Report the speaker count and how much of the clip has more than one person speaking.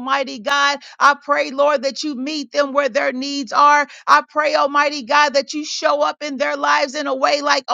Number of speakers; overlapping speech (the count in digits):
1, no overlap